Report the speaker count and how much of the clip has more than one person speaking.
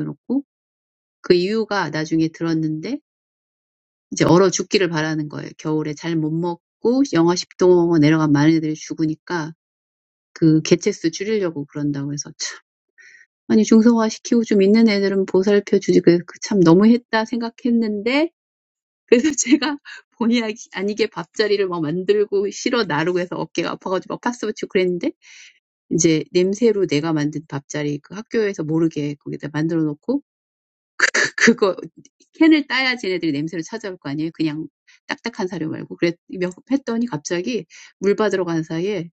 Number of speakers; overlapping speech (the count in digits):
1, no overlap